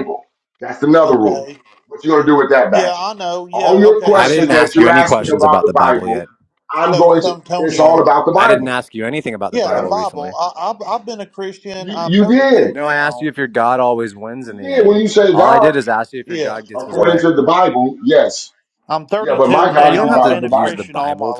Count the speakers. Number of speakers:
three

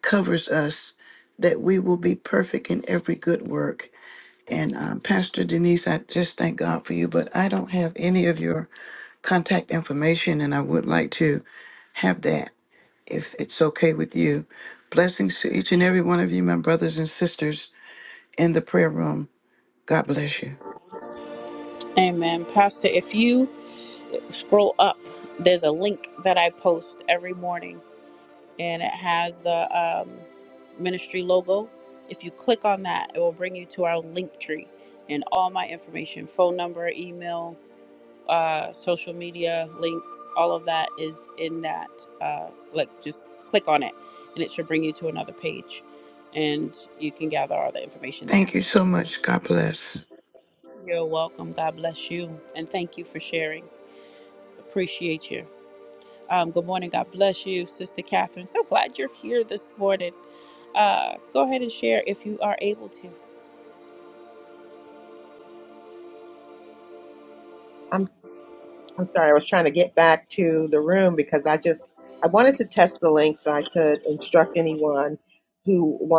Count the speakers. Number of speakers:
three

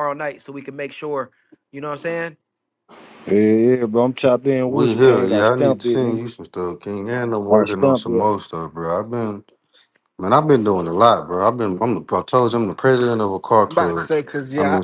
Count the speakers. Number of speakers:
four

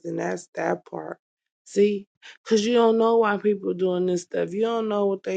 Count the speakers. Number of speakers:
one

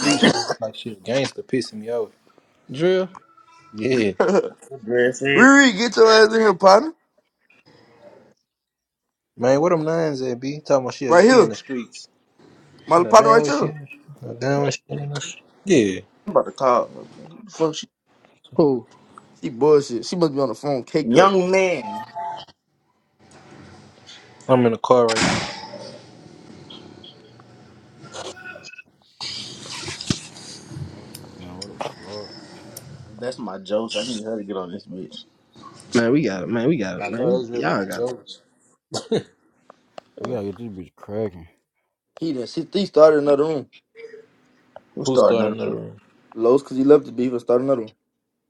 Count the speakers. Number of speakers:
five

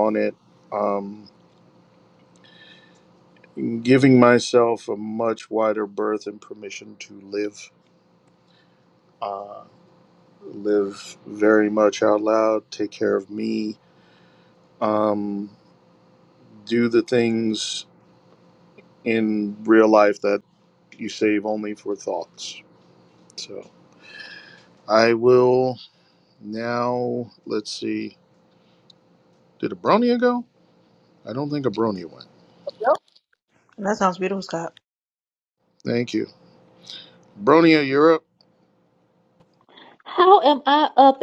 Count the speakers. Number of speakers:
three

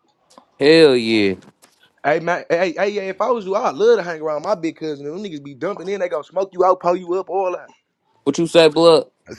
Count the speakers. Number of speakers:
two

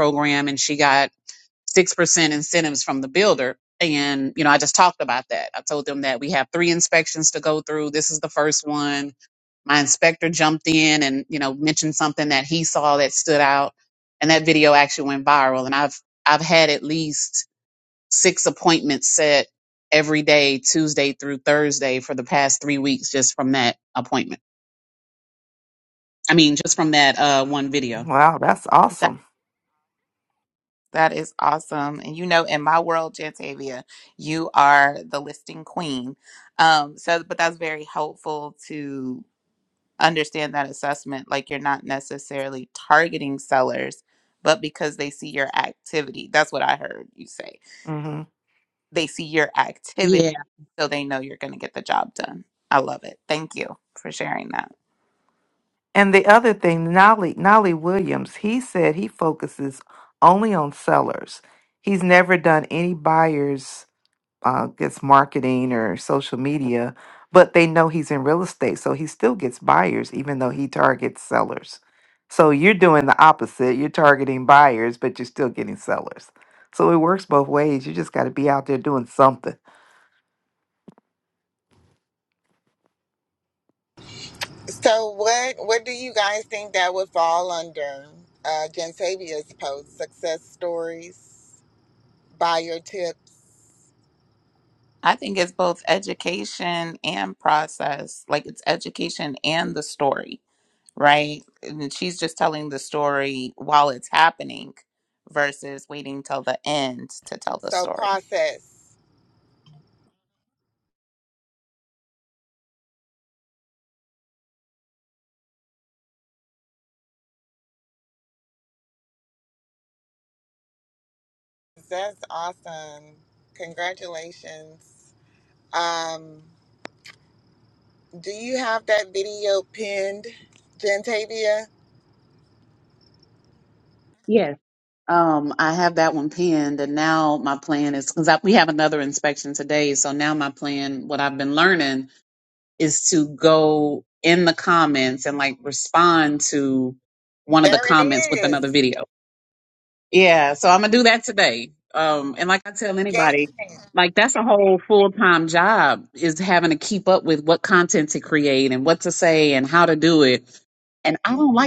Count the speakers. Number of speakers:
four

